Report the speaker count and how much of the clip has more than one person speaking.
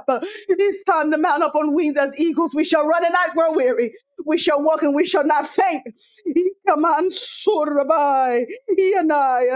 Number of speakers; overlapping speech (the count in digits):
1, no overlap